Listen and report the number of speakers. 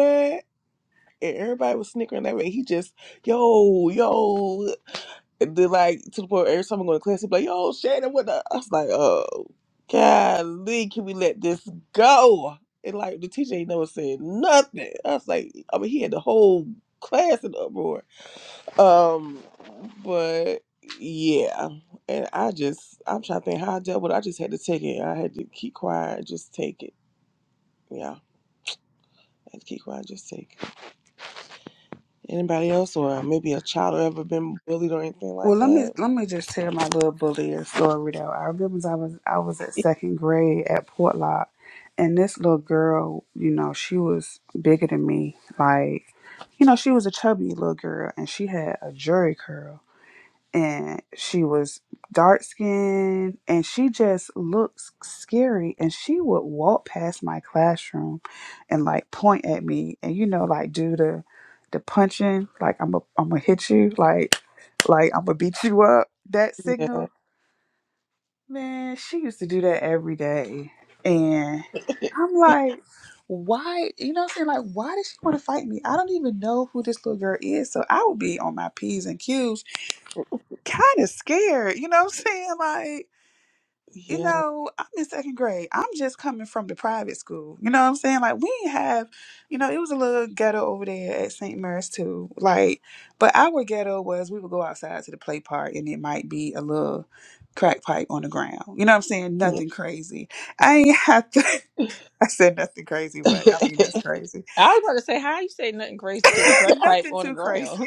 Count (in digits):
3